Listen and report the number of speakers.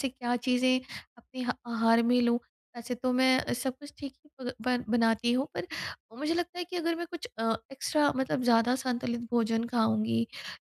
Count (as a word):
one